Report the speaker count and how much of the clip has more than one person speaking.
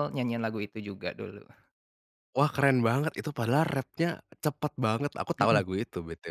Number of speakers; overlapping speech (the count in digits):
2, about 3%